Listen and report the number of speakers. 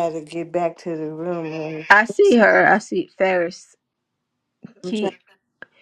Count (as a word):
two